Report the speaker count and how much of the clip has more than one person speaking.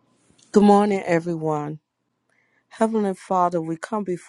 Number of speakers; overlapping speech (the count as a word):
one, no overlap